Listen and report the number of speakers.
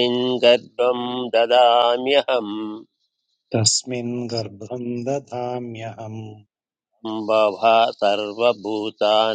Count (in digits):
2